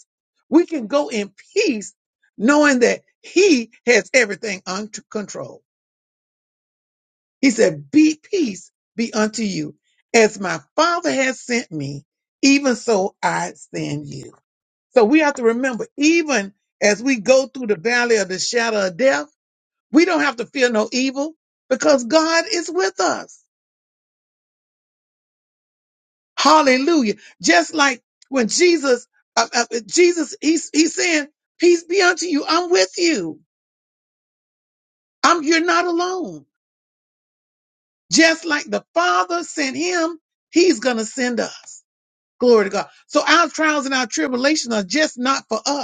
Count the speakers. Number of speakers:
1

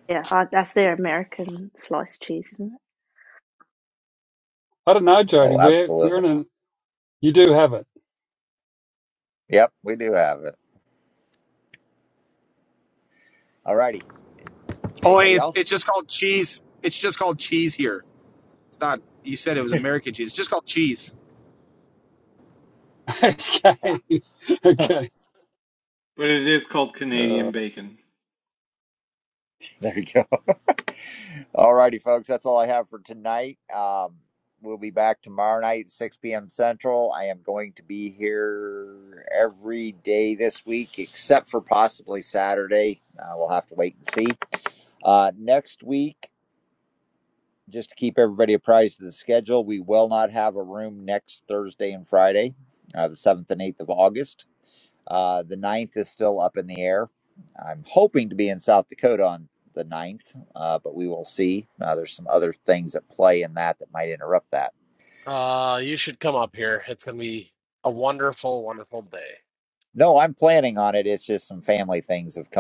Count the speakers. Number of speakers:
6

